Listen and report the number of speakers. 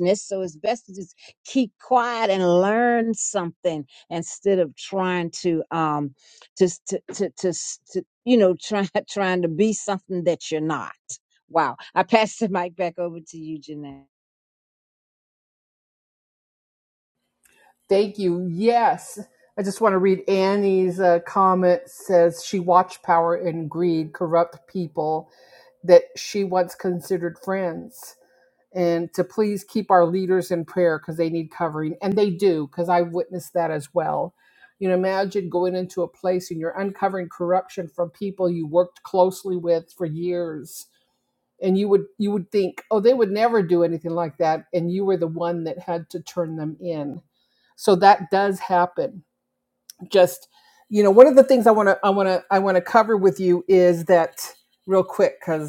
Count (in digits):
2